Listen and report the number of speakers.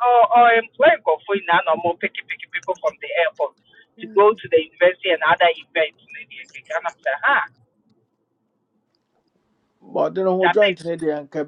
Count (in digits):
2